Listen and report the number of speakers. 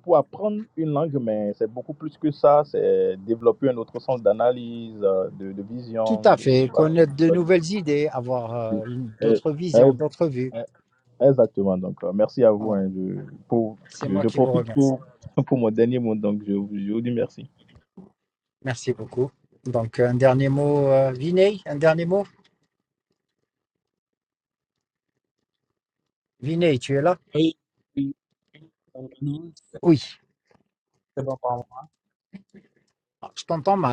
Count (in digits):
3